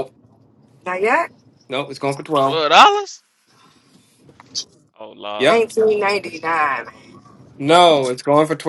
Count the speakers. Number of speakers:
3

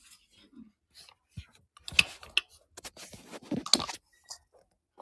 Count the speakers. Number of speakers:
0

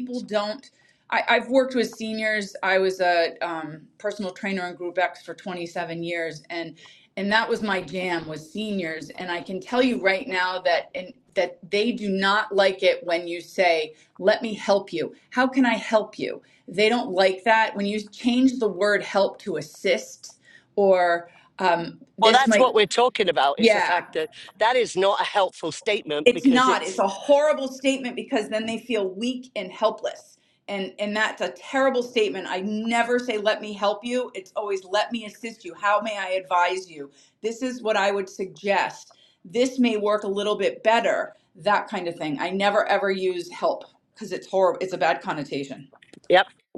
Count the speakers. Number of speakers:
2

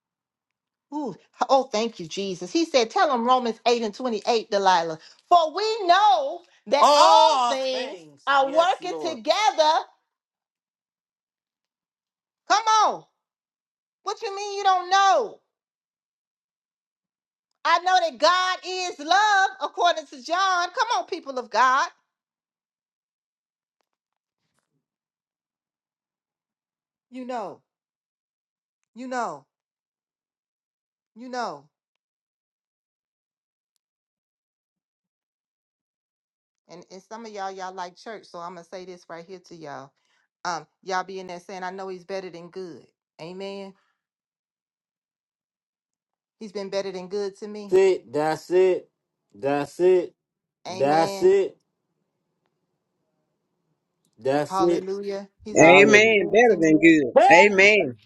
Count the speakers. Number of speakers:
3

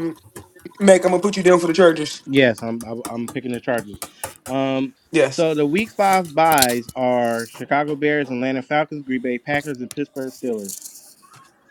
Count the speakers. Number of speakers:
2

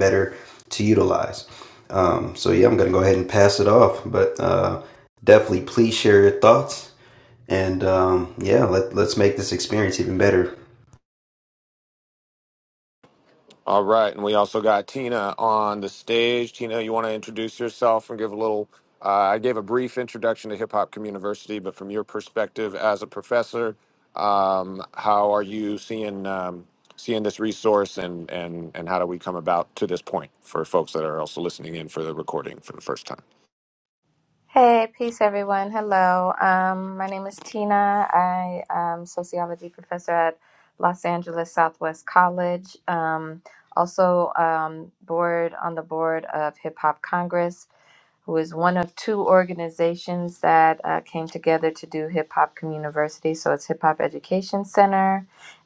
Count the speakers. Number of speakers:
3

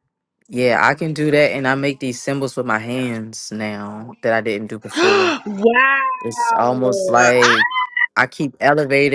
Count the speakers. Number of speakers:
2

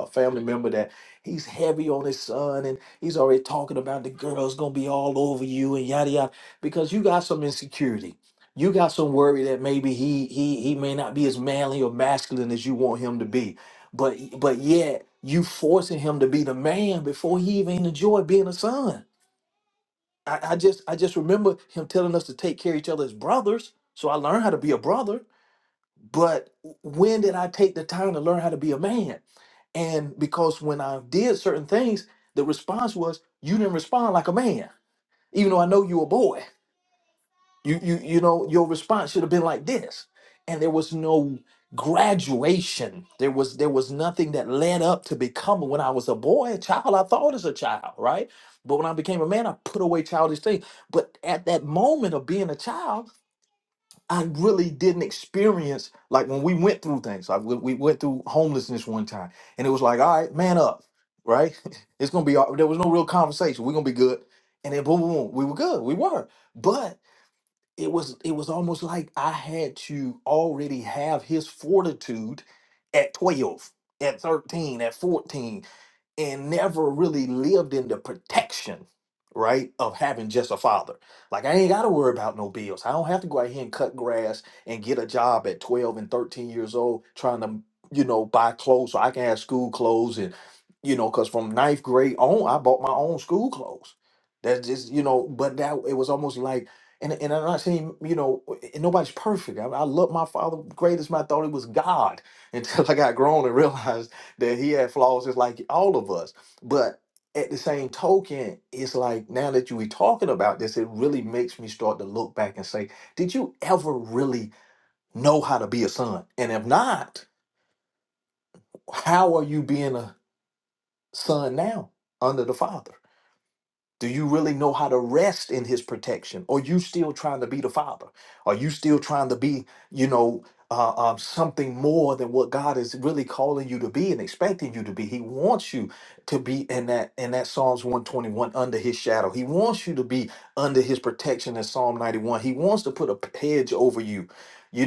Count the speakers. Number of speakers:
1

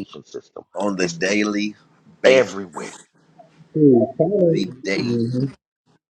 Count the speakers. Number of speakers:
3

